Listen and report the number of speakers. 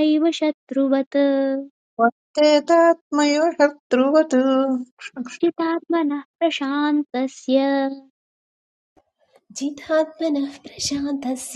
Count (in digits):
3